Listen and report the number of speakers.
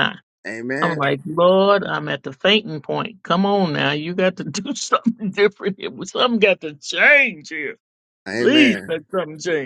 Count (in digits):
2